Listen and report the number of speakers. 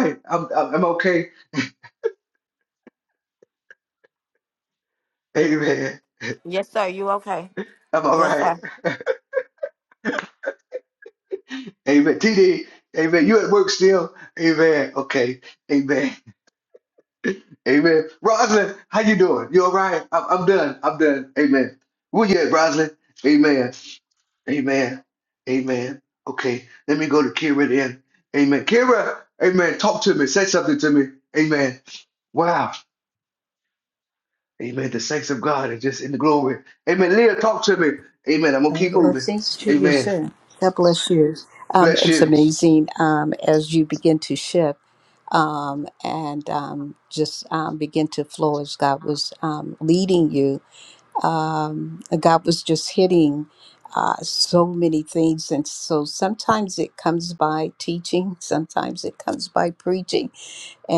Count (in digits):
3